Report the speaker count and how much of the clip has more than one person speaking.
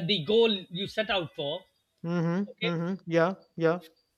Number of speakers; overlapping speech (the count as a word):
two, about 6%